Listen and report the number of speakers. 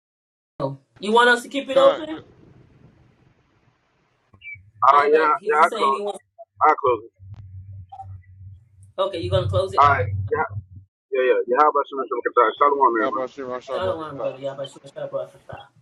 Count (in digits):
3